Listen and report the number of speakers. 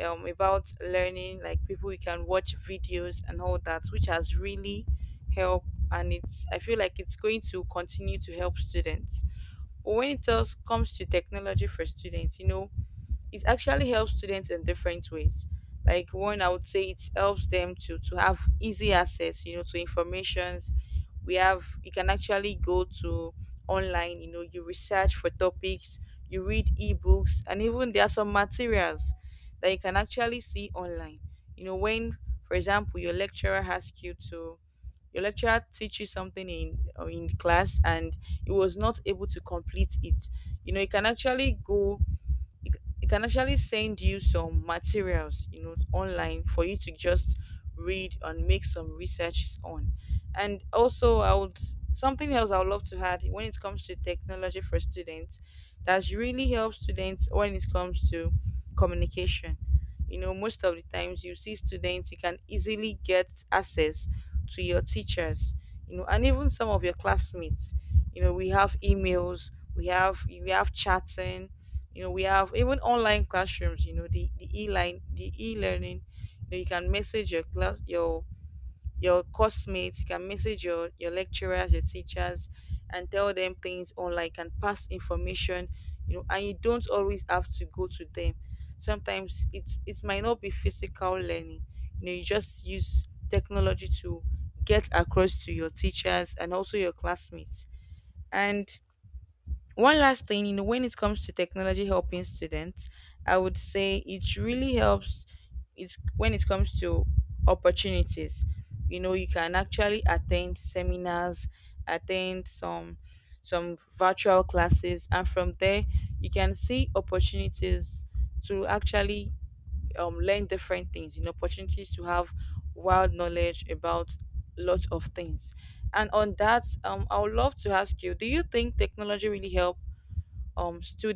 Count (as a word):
one